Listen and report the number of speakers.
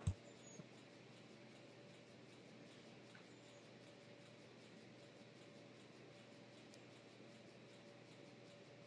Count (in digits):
0